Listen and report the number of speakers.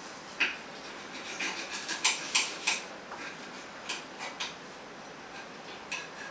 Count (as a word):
zero